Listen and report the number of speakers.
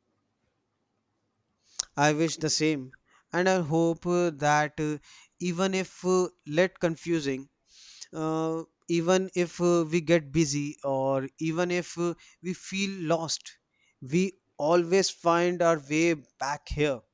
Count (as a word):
one